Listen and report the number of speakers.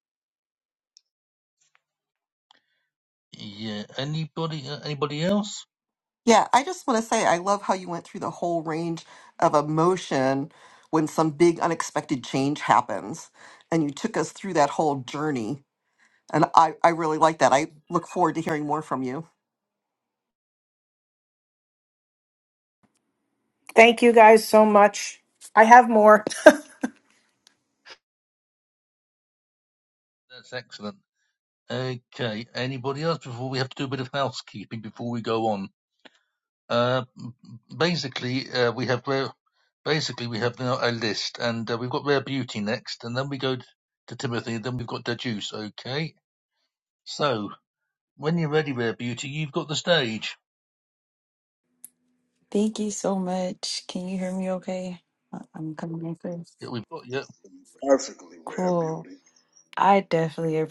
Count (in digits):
5